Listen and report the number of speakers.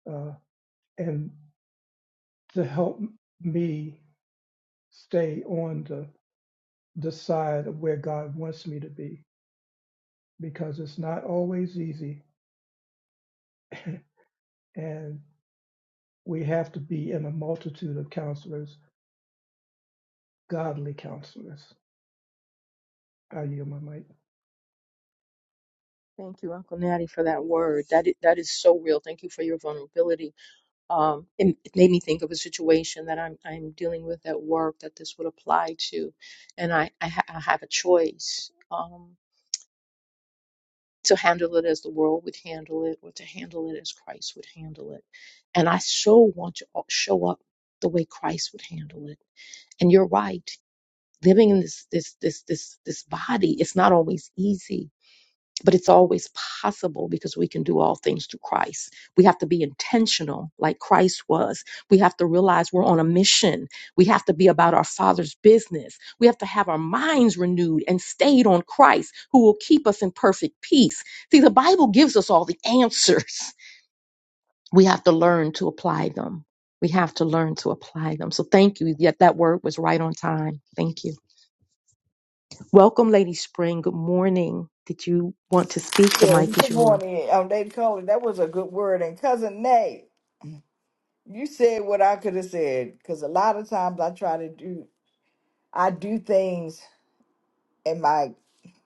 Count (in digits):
3